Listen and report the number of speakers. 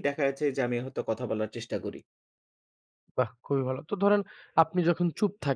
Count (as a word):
two